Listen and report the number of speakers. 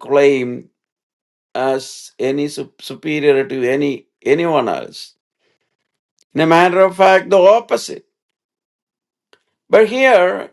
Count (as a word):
one